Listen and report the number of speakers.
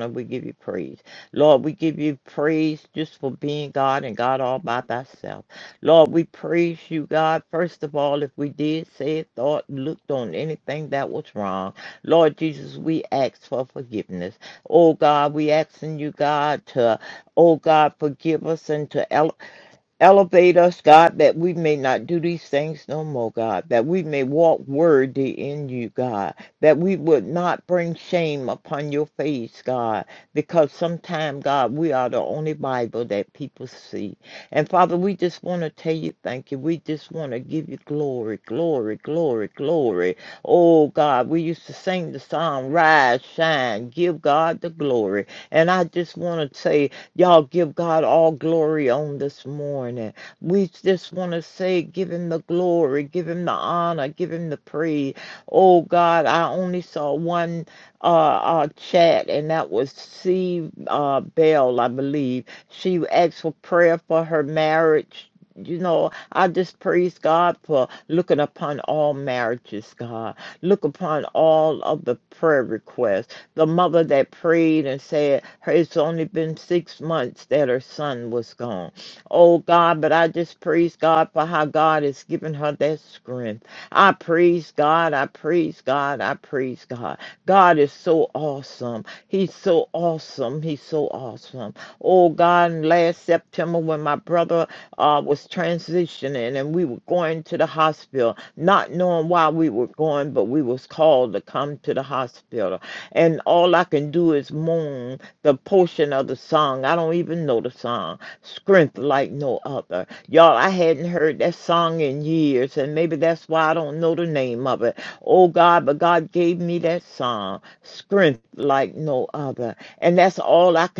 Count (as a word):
one